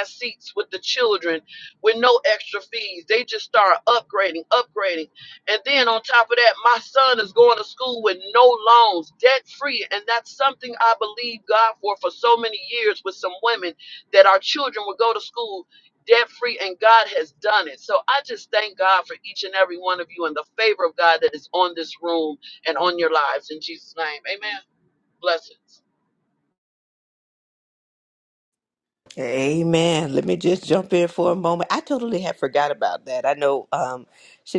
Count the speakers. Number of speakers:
2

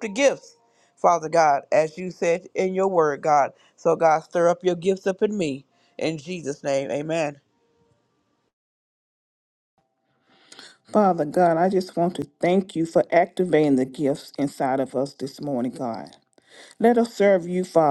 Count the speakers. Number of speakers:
2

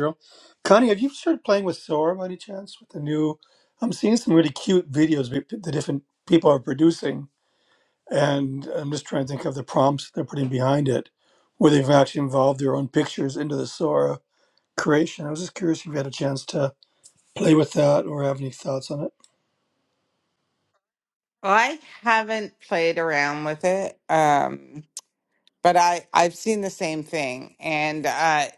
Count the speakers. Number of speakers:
2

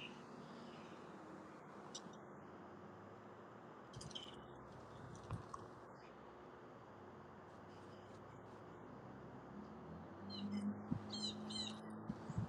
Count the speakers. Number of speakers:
0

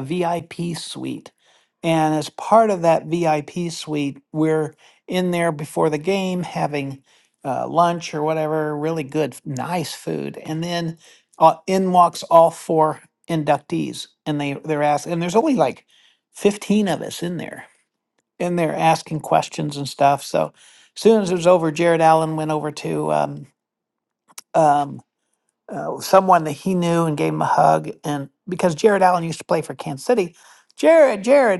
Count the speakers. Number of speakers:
1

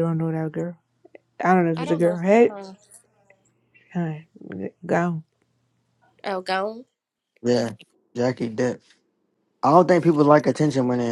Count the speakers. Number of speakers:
3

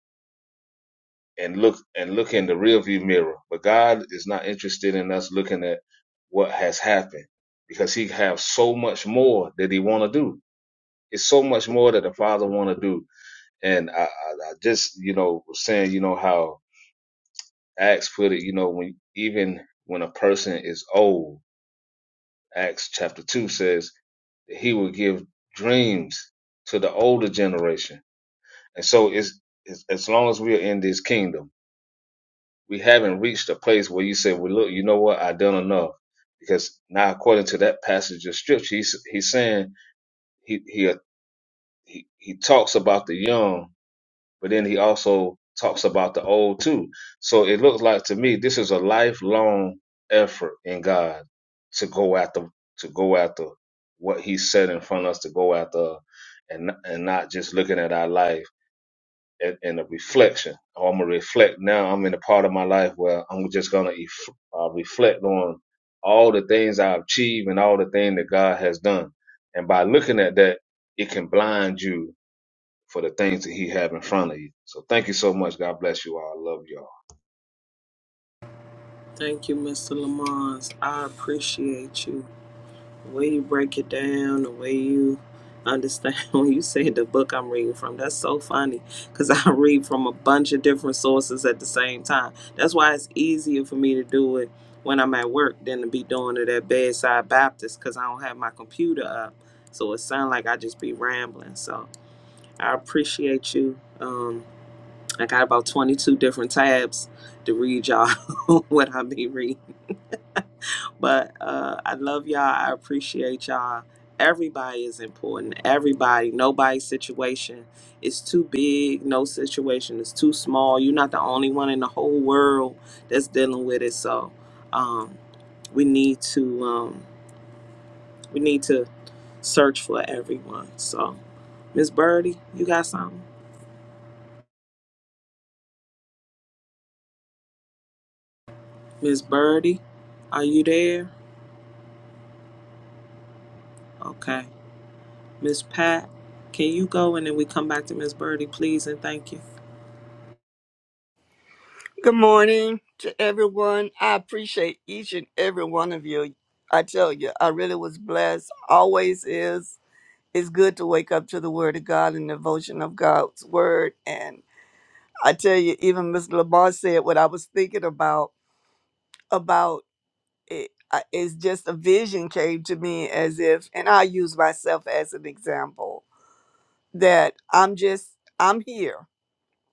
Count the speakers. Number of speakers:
3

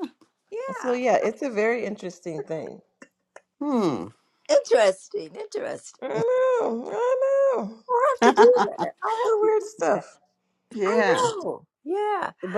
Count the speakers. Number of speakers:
3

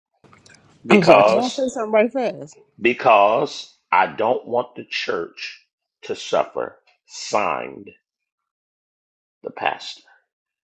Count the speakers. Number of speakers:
2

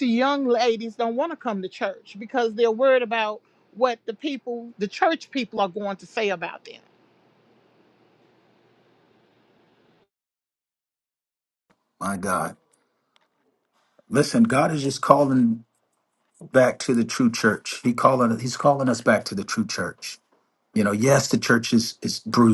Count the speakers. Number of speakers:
2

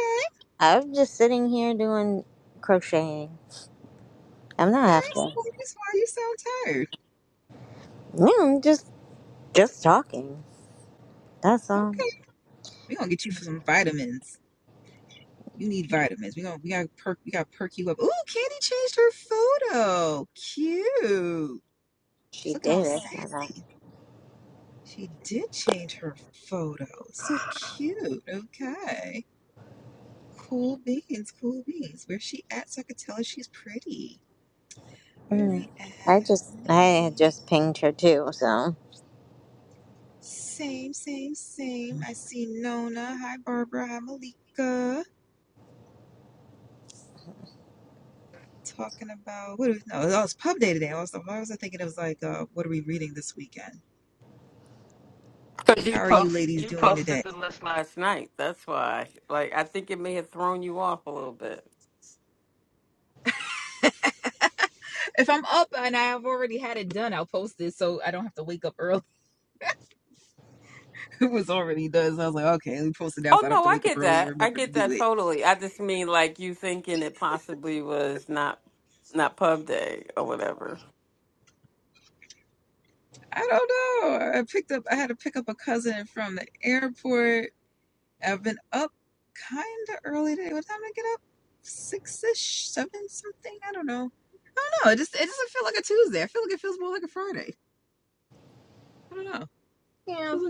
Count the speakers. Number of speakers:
3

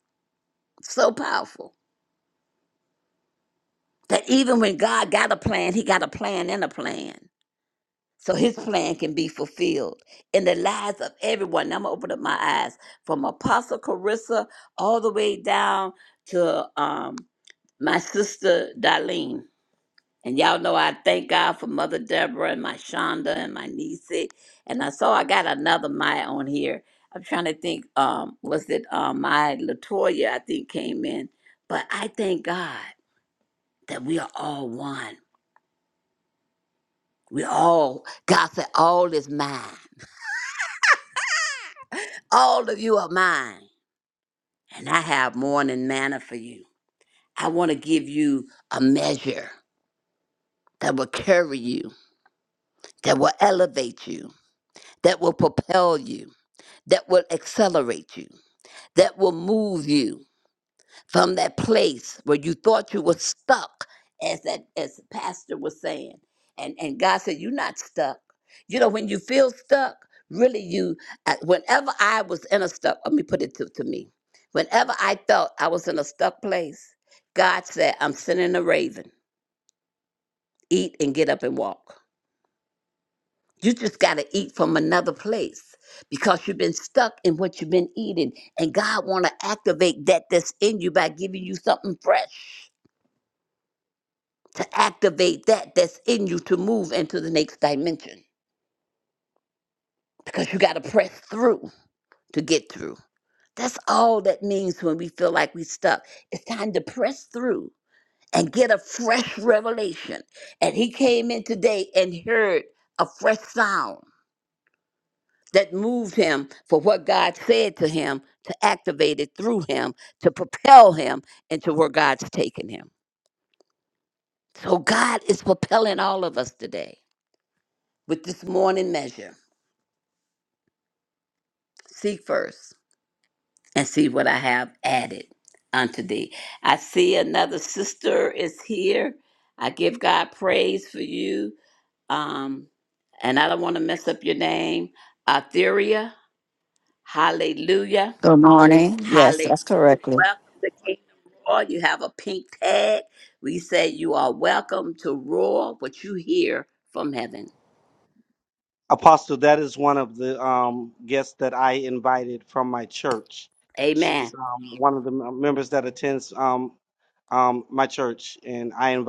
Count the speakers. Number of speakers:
3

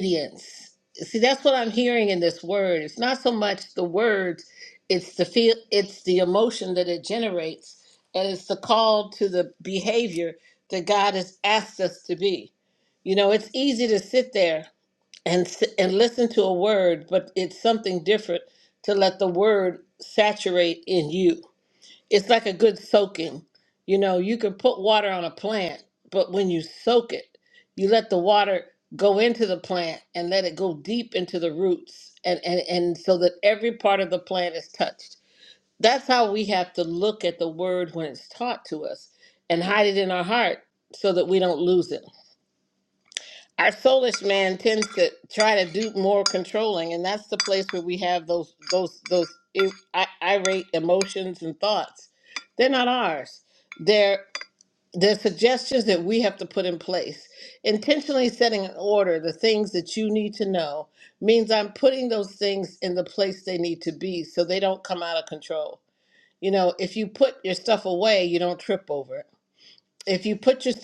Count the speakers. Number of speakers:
1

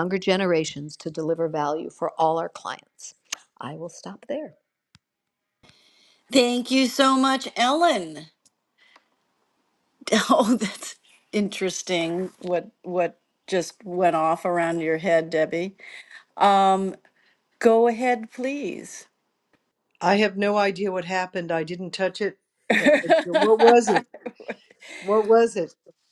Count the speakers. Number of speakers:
3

